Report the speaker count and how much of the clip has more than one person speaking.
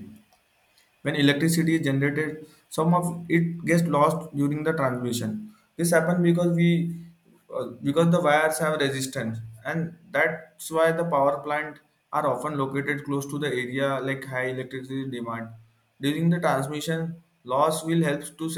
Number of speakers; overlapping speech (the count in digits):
1, no overlap